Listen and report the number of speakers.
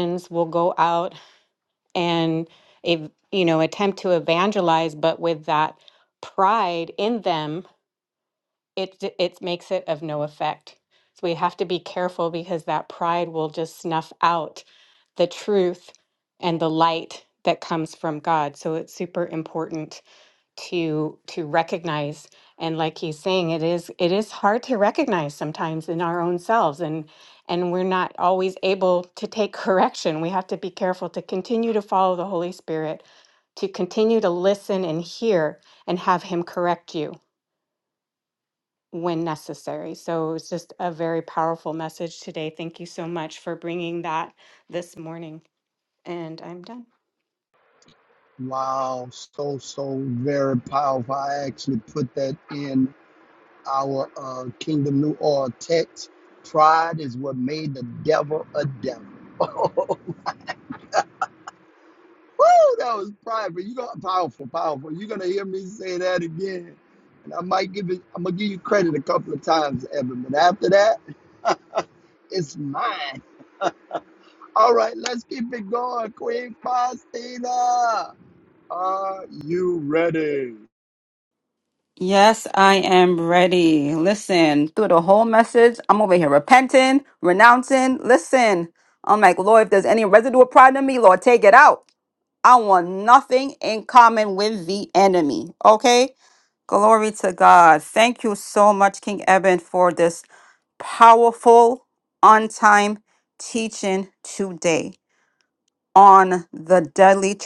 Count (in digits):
3